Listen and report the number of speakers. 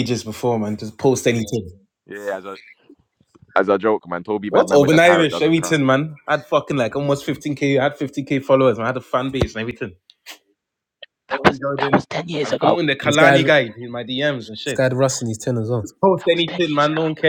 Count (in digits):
3